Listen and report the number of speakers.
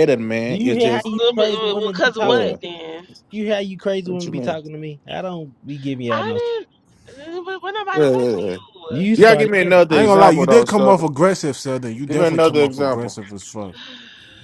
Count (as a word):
four